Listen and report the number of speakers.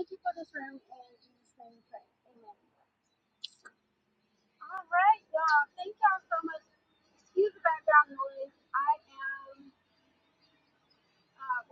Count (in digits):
1